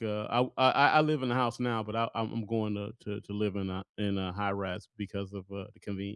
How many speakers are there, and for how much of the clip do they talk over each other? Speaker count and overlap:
1, no overlap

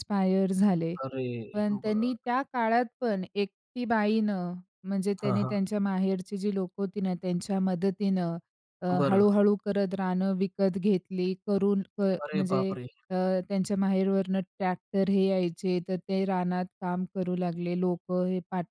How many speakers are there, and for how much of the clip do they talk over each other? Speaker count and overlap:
2, about 10%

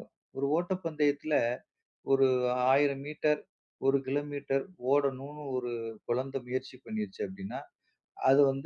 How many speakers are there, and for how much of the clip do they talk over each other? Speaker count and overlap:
1, no overlap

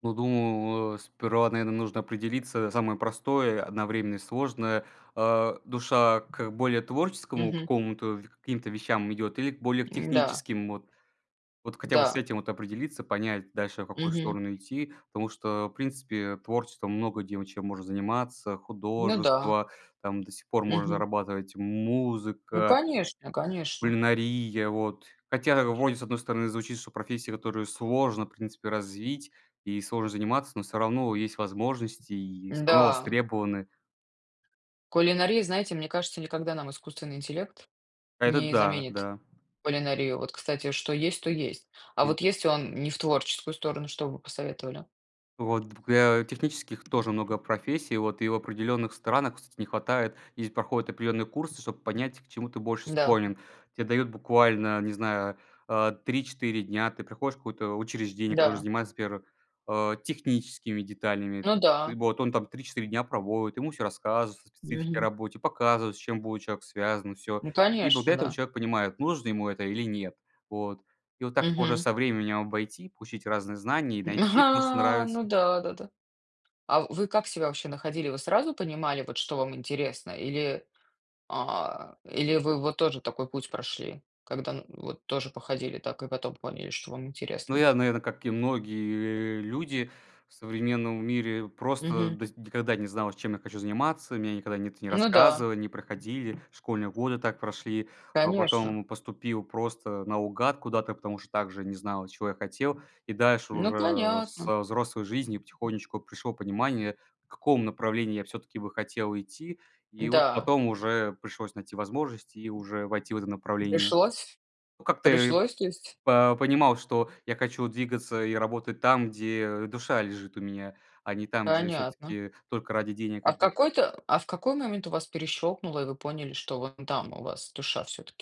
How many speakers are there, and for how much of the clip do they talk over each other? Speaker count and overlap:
2, about 9%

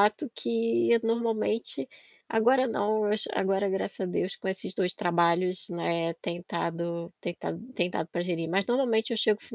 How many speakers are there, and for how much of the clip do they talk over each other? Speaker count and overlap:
1, no overlap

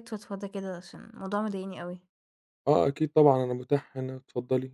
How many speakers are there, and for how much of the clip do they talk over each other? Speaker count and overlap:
2, no overlap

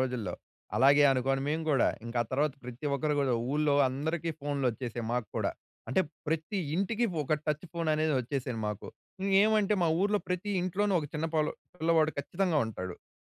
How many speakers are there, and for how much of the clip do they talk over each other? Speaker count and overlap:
1, no overlap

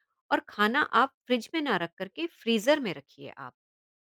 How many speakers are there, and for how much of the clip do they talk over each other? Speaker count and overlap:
1, no overlap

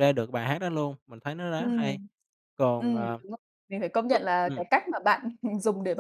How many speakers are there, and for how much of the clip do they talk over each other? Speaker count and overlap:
2, about 15%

